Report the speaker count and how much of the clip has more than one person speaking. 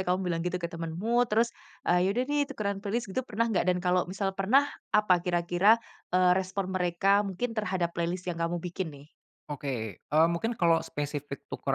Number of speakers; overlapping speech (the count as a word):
two, no overlap